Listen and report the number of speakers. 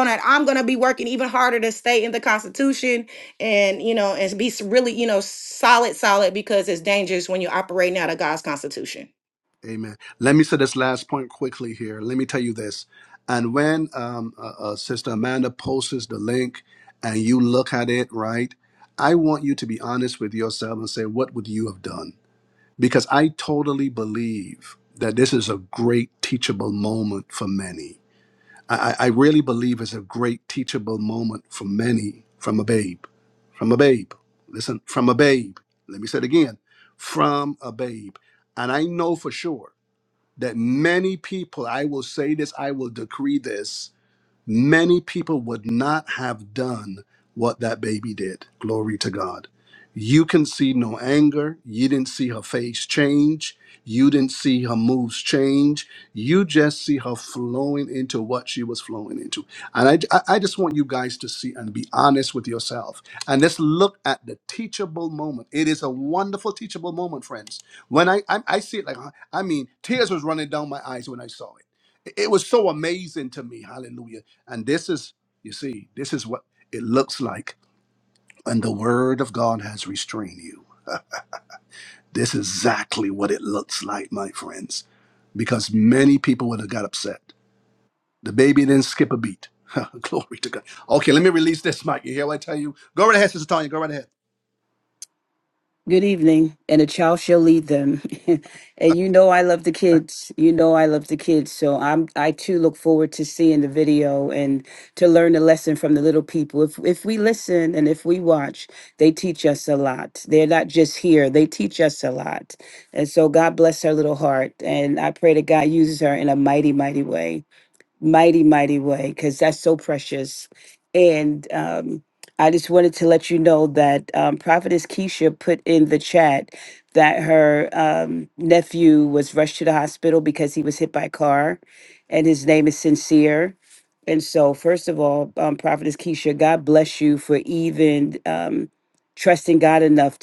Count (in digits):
3